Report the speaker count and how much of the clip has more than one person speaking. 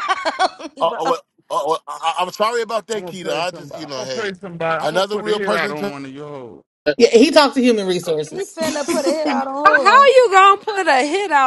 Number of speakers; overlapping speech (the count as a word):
five, about 30%